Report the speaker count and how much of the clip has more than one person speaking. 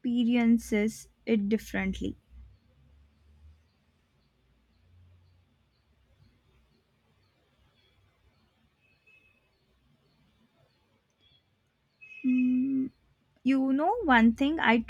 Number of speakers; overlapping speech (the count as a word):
one, no overlap